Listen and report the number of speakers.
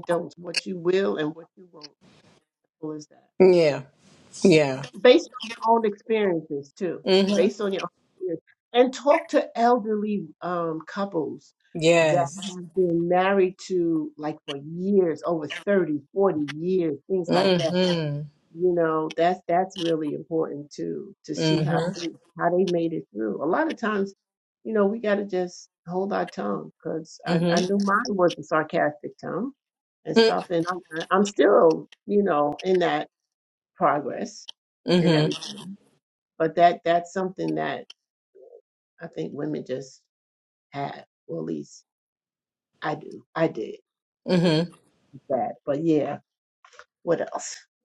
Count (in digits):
2